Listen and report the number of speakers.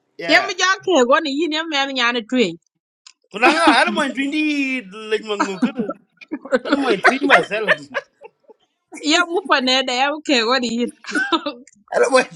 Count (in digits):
2